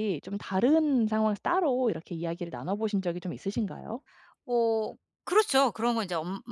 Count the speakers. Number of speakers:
2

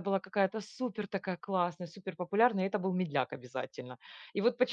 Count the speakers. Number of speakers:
1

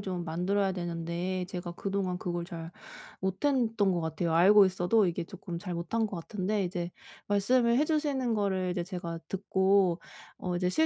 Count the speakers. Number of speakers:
1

